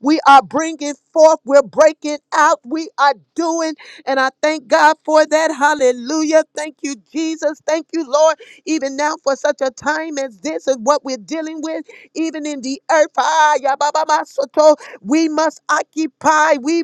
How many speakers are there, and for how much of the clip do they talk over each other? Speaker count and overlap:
one, no overlap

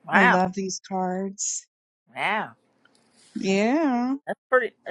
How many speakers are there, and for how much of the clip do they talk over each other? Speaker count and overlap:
two, about 6%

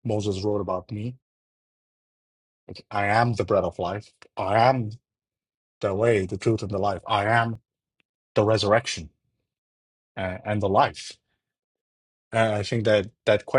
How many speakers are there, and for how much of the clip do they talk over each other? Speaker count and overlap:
one, no overlap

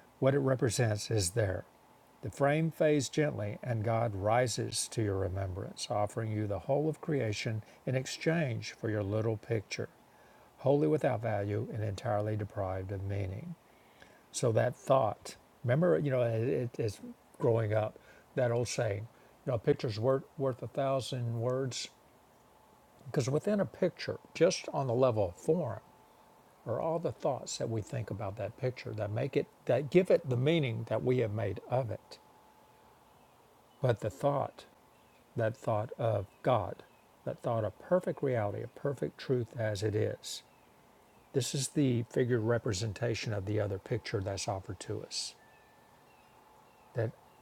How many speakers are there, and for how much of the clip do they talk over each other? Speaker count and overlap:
one, no overlap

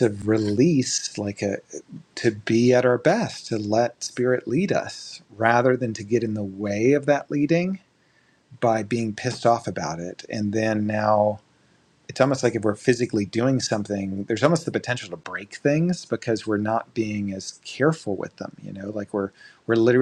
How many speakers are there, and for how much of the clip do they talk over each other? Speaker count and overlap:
one, no overlap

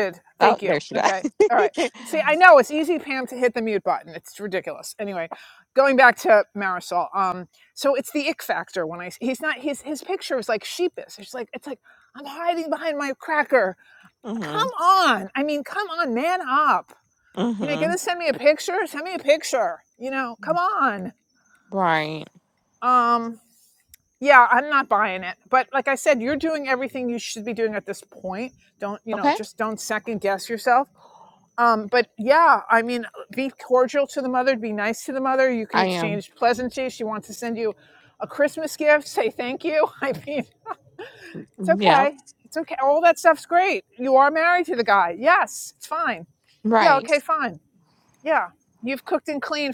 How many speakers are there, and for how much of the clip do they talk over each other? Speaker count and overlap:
two, about 6%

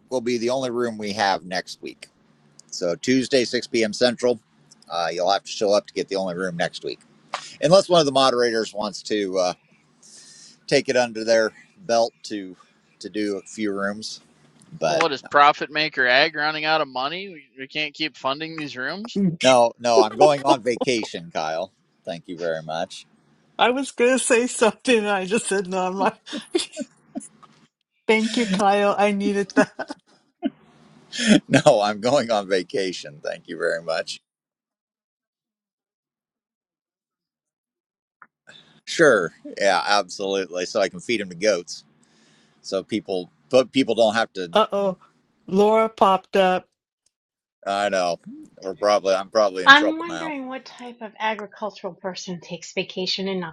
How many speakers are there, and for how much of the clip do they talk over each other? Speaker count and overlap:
four, about 2%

